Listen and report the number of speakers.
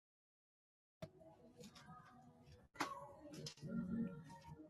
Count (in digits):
0